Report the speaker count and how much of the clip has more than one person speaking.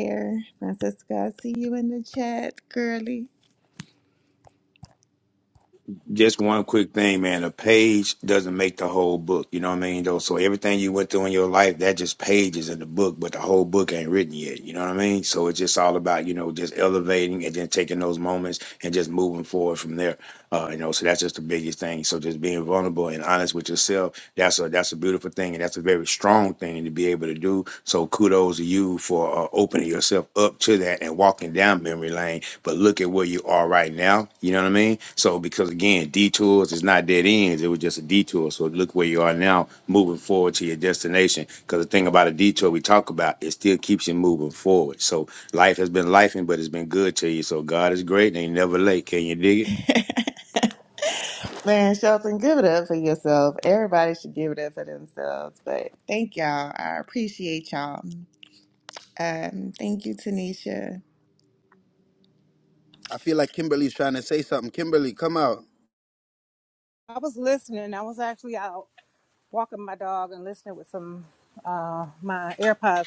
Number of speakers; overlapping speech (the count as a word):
four, no overlap